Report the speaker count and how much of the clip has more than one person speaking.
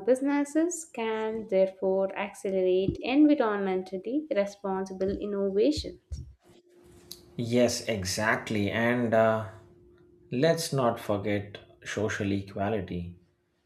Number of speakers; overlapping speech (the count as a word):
two, no overlap